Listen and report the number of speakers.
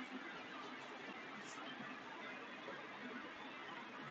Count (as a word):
zero